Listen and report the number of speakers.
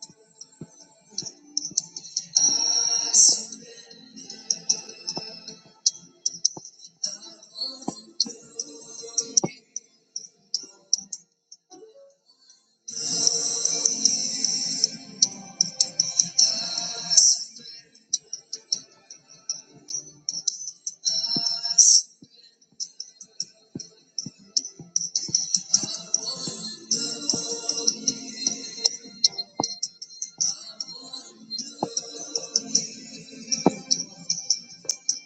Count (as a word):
zero